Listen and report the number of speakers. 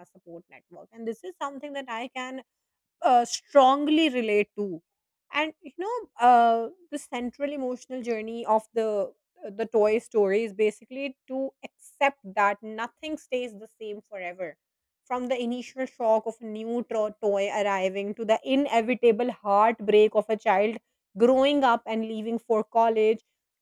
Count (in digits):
1